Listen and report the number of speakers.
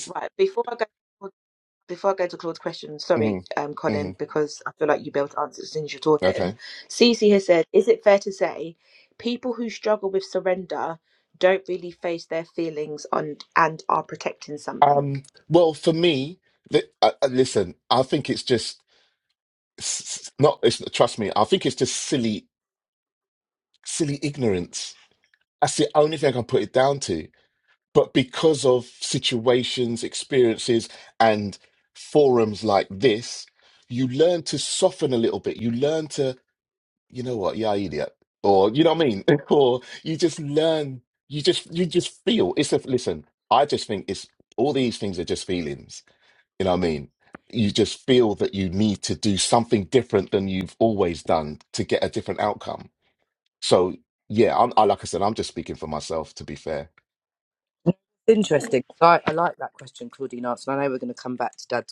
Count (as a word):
three